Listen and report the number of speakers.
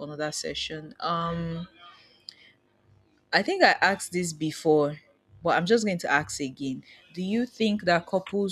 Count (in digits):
1